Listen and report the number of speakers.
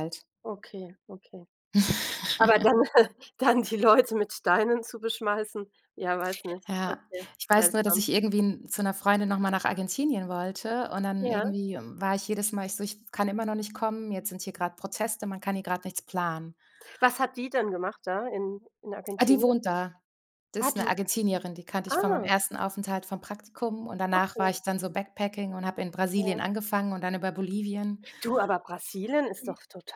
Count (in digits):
2